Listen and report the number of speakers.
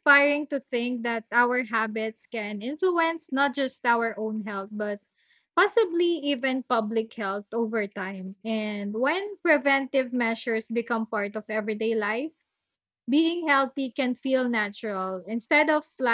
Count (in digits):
1